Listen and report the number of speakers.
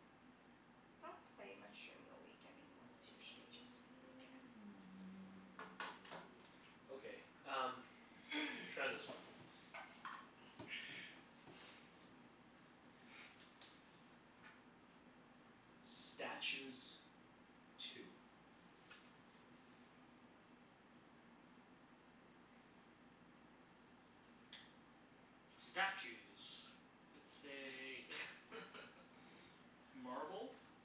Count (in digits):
3